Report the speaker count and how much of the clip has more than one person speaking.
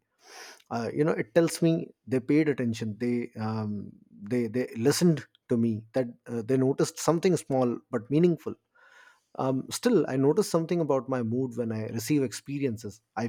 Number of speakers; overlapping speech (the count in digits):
1, no overlap